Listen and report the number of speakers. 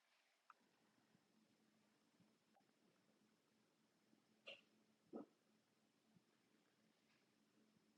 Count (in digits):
0